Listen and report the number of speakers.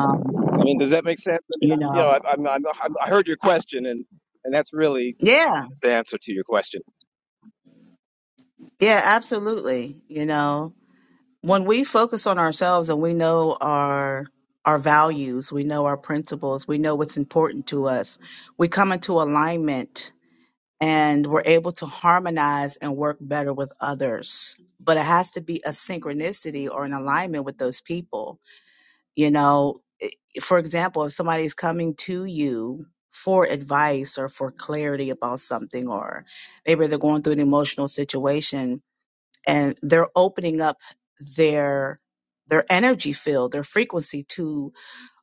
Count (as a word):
two